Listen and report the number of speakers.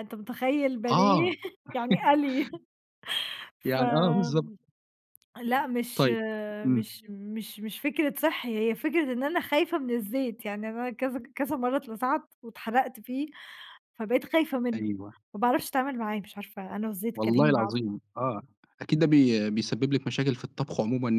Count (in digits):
2